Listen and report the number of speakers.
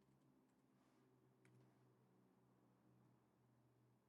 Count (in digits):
0